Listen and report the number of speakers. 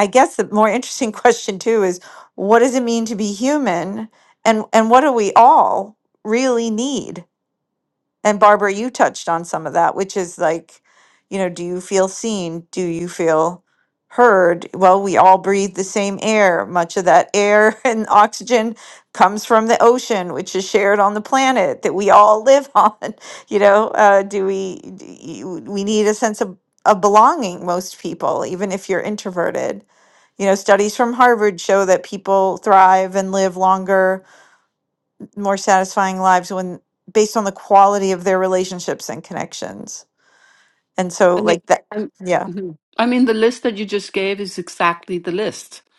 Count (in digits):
2